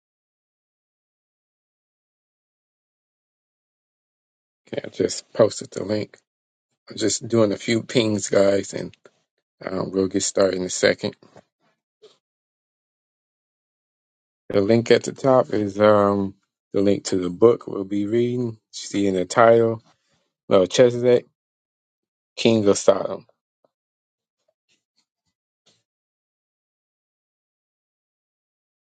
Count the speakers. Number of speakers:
one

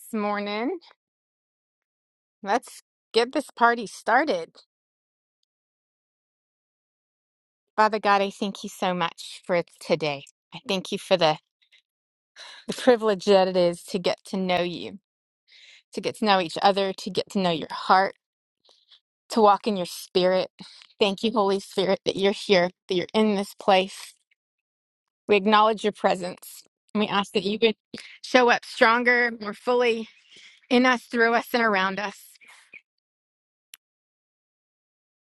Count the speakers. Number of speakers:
one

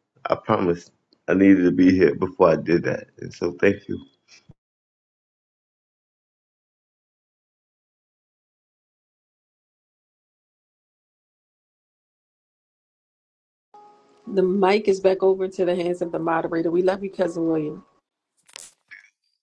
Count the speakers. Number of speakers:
two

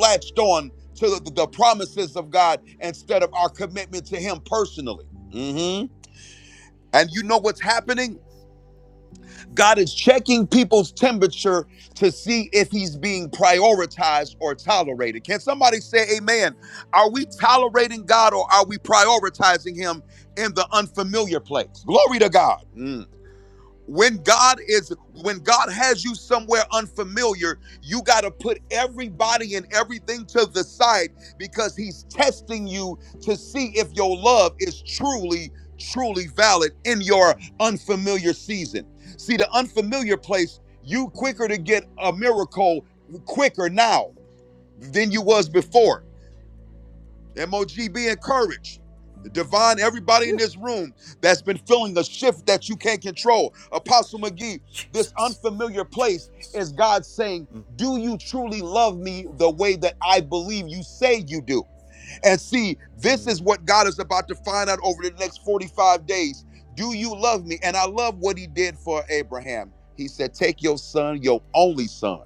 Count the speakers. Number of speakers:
one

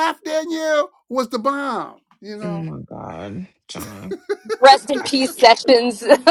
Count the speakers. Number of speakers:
three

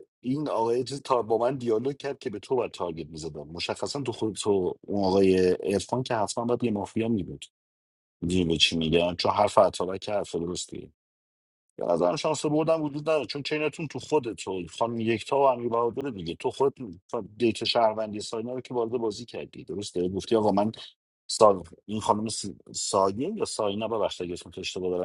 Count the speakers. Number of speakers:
one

